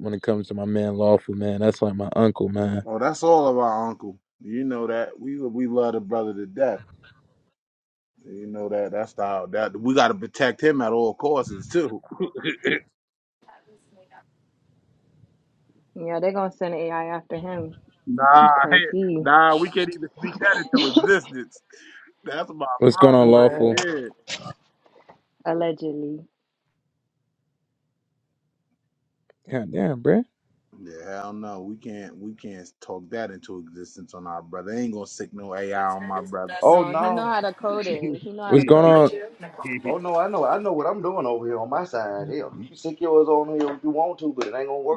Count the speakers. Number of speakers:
four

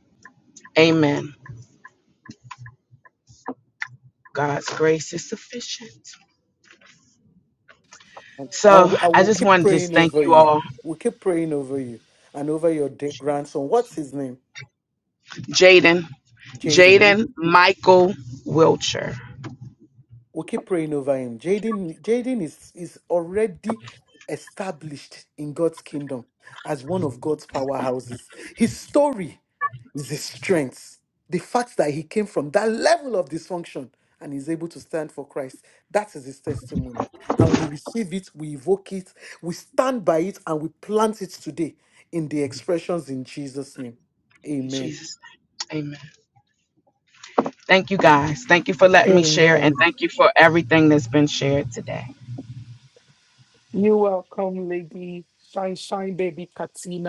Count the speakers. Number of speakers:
three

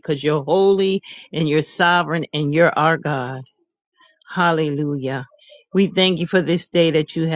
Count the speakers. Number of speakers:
one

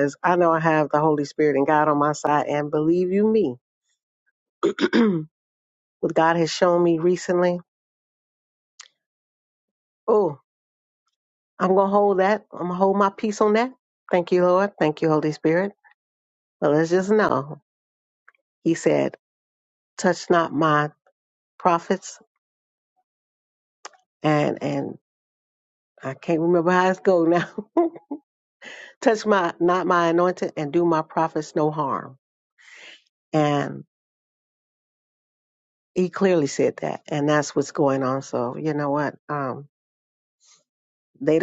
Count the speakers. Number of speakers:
one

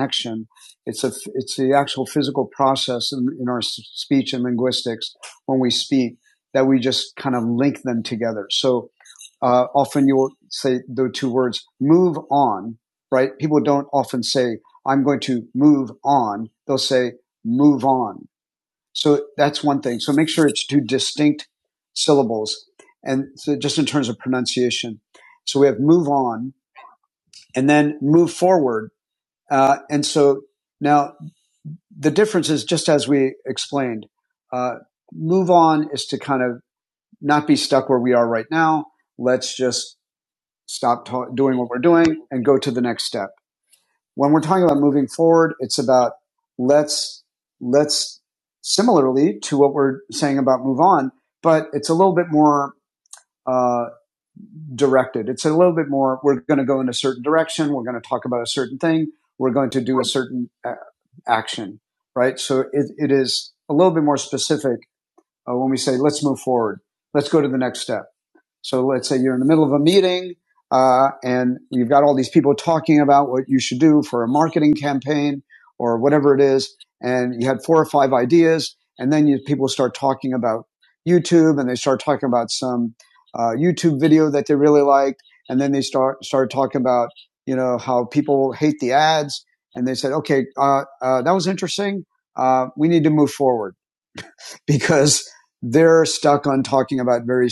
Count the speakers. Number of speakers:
one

